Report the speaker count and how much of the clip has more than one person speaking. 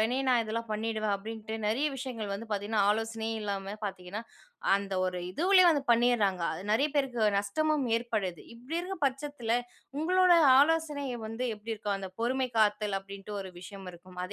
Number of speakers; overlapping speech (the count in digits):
1, no overlap